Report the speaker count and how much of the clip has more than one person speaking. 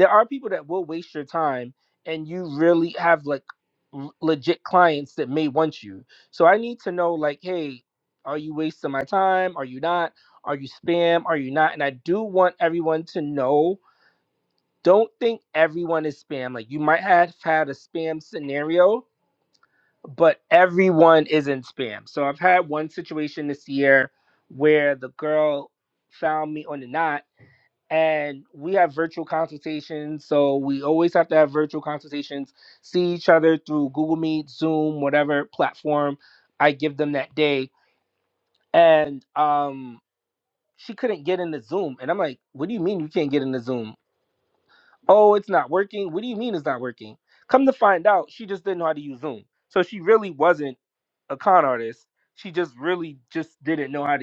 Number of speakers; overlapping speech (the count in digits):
1, no overlap